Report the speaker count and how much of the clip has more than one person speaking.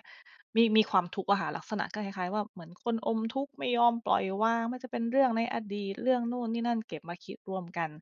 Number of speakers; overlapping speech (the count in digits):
1, no overlap